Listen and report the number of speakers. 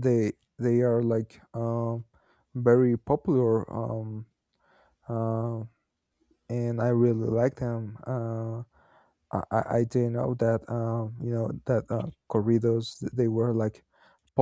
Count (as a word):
one